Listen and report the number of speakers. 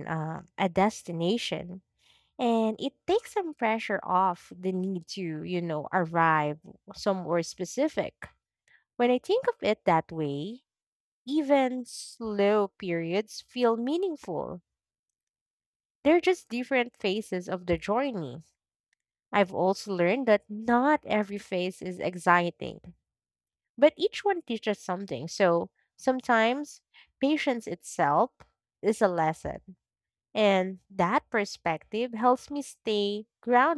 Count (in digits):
1